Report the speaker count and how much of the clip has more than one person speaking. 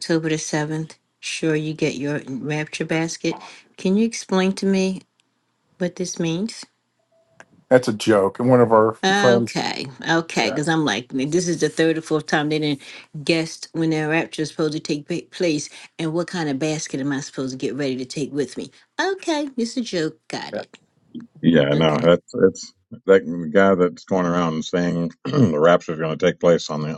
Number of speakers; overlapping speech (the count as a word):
three, about 4%